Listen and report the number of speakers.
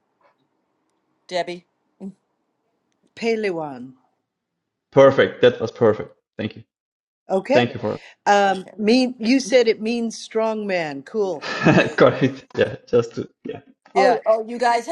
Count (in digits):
3